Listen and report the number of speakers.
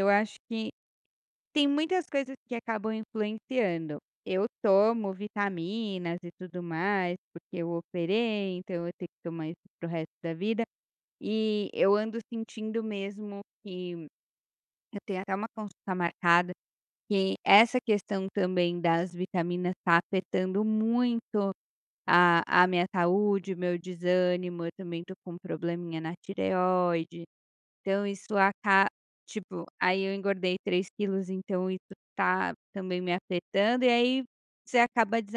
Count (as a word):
one